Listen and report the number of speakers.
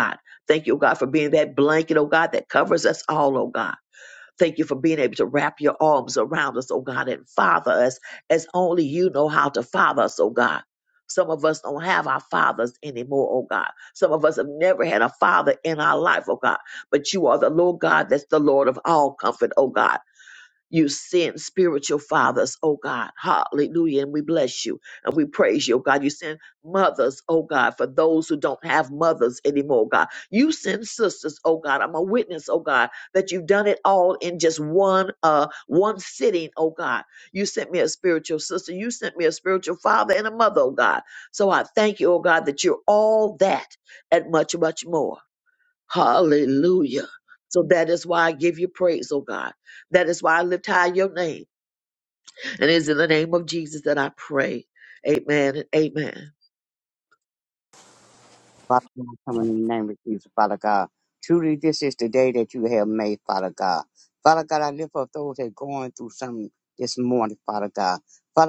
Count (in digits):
2